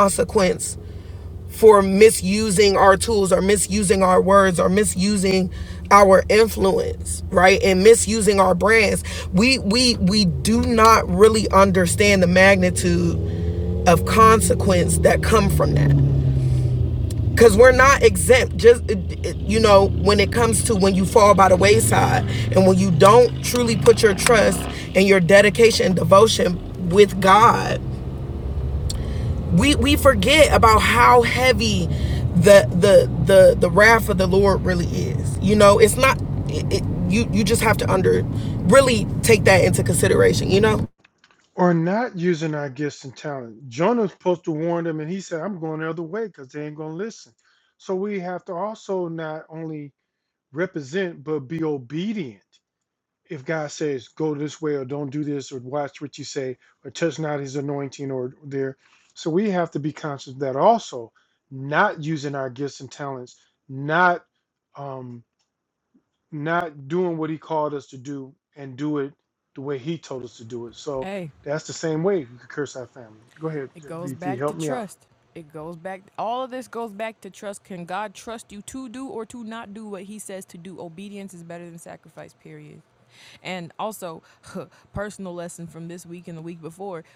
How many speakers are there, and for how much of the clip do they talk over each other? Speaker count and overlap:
three, about 1%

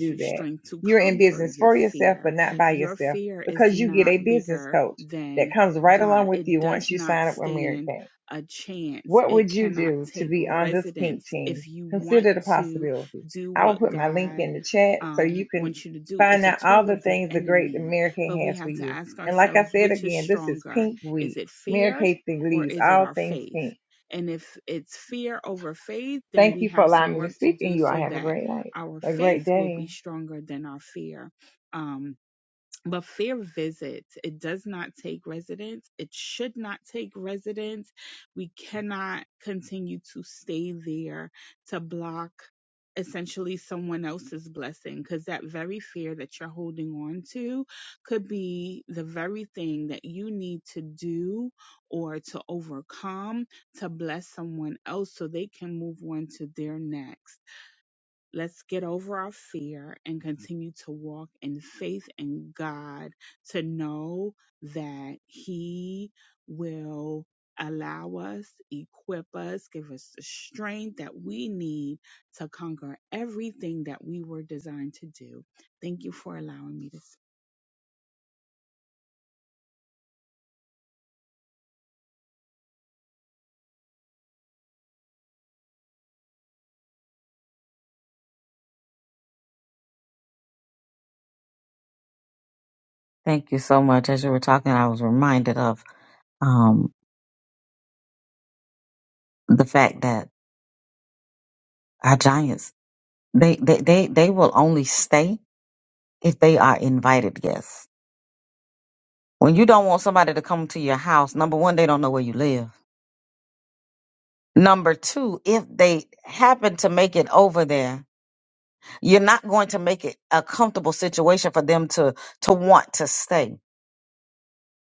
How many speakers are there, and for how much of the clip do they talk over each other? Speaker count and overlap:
three, about 17%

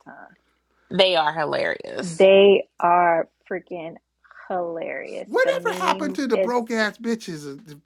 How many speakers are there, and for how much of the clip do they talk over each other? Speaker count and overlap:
three, about 16%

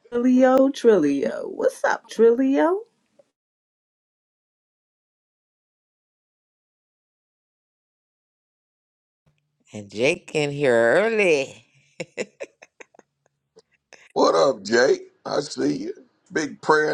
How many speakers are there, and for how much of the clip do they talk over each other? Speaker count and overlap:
three, no overlap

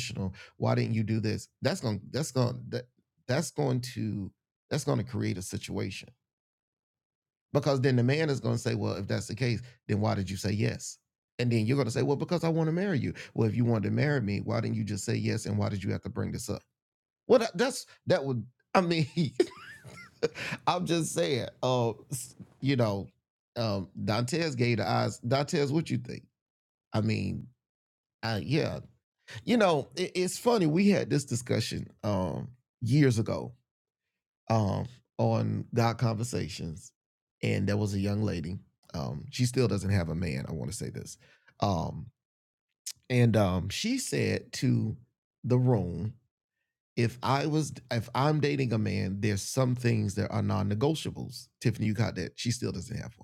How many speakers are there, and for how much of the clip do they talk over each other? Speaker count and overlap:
one, no overlap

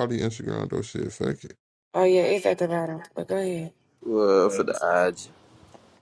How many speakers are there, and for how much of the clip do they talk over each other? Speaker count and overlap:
three, no overlap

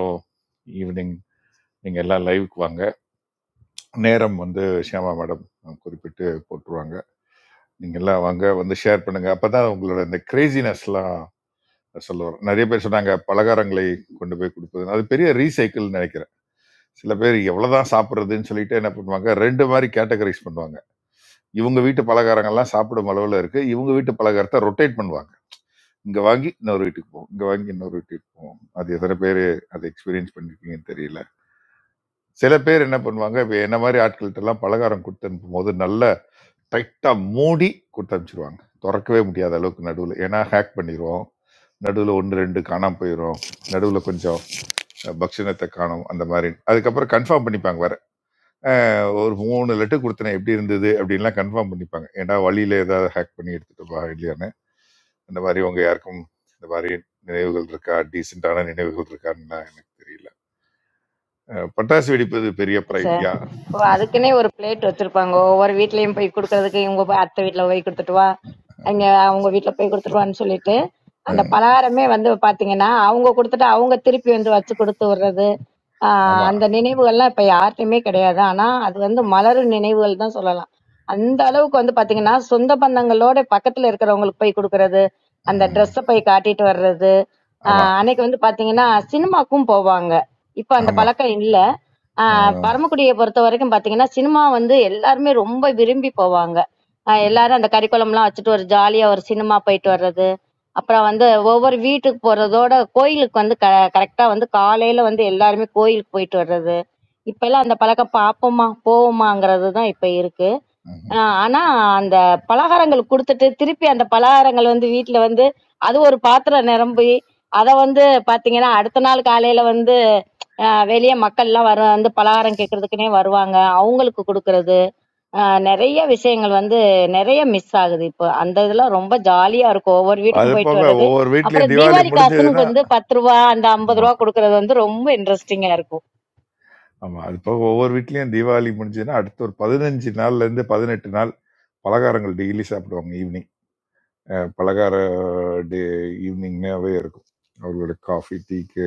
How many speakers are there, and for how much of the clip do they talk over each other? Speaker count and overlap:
two, about 3%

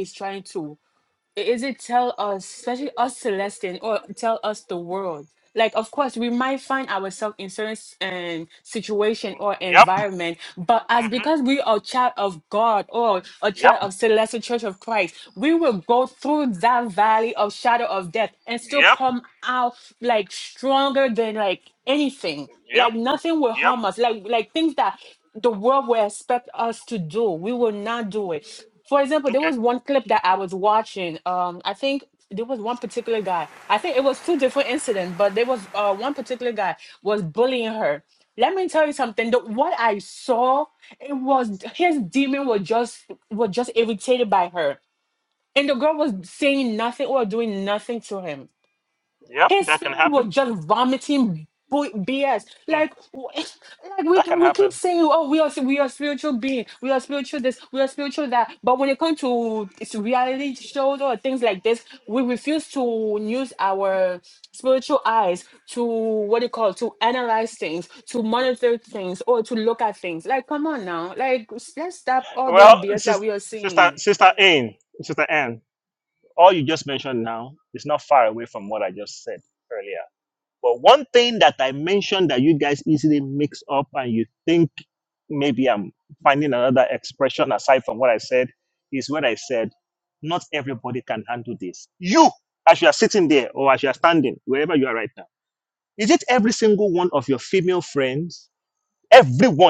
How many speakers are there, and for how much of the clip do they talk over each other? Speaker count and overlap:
two, about 4%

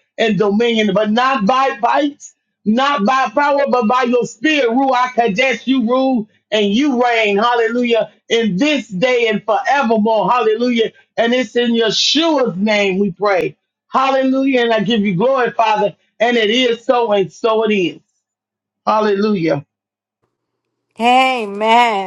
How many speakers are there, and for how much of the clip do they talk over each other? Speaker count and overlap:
two, no overlap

